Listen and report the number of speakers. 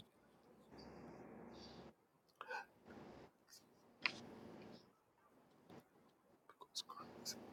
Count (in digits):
0